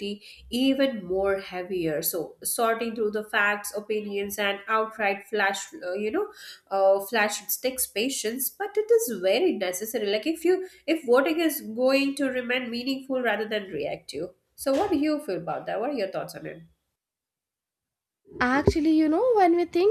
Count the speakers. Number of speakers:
2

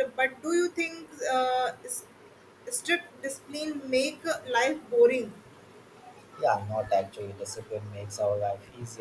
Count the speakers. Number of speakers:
2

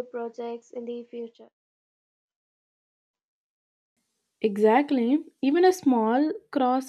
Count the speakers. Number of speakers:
2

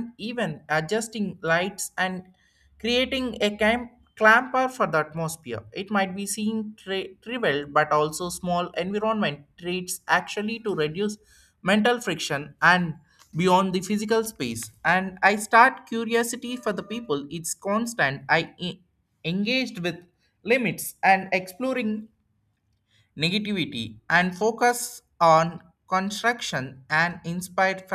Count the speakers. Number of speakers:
1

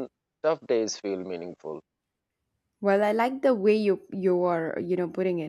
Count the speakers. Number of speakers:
2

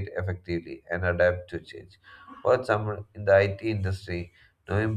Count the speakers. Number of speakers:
1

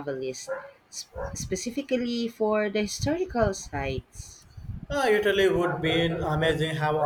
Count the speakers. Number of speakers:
2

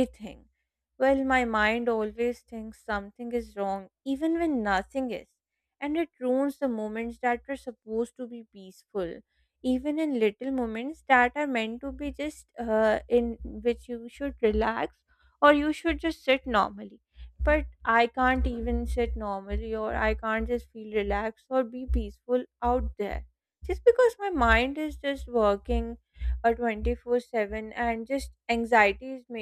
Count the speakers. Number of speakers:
1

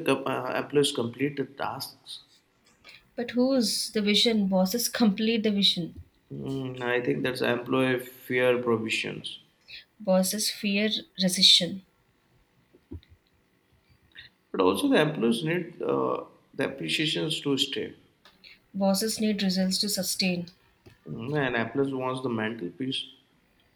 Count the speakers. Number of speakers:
2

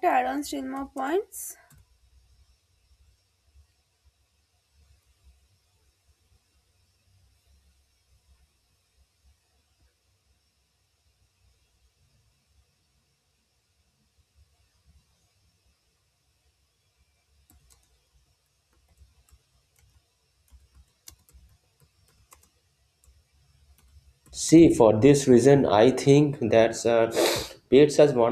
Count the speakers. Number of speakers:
2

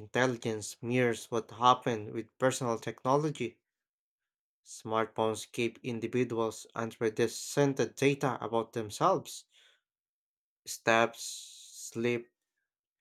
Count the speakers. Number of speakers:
1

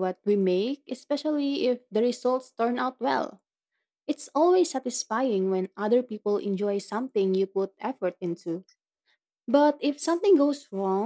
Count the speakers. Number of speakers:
1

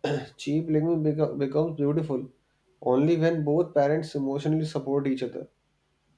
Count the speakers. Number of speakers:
1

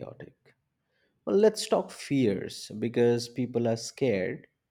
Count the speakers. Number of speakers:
1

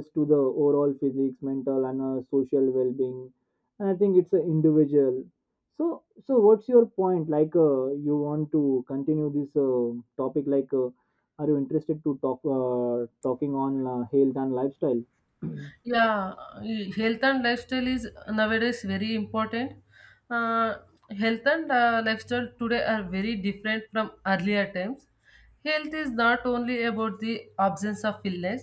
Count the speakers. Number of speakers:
2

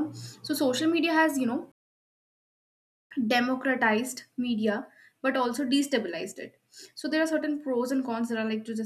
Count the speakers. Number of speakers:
1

